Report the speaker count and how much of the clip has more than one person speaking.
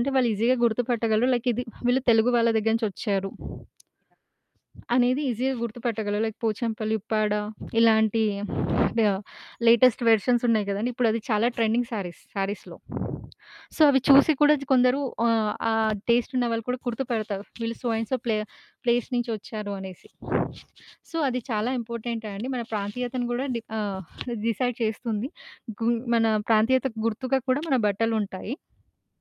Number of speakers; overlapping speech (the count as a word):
one, no overlap